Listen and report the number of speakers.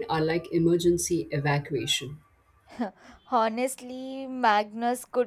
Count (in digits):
2